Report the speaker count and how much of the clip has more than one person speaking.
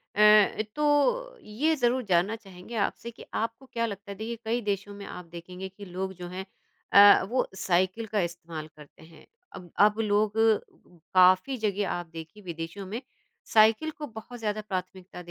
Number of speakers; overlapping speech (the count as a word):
one, no overlap